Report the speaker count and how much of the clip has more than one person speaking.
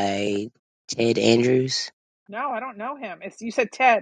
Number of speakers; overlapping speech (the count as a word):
two, no overlap